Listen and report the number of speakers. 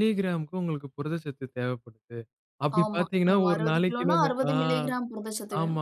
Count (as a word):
two